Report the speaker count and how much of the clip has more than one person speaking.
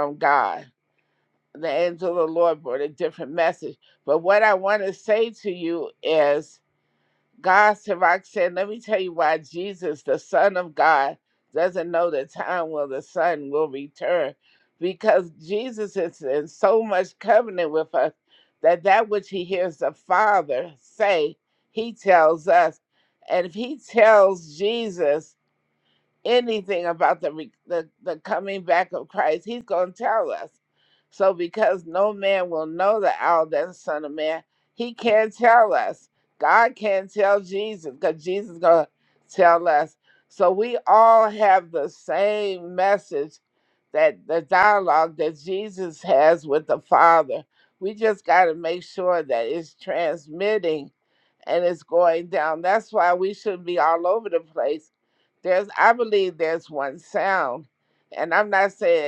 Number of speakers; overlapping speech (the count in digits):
1, no overlap